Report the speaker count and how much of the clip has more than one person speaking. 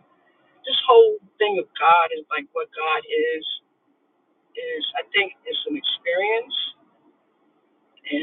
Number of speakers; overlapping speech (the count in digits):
1, no overlap